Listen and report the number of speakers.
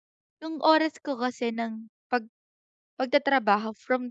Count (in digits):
1